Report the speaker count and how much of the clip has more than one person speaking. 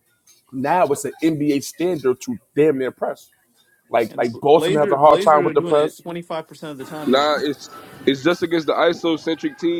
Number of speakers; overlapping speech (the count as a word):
three, about 21%